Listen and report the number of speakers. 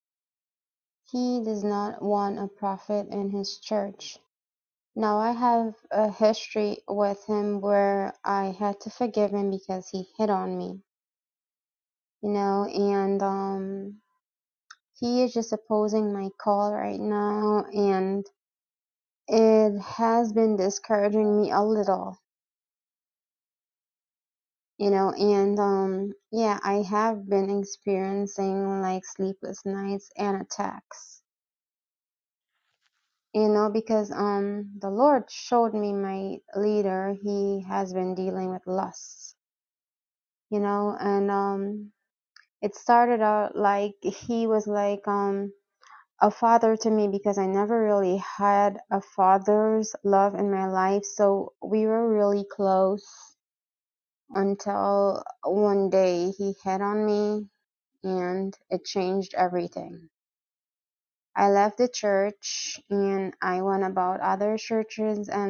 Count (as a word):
one